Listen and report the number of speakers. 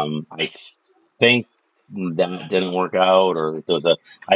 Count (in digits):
1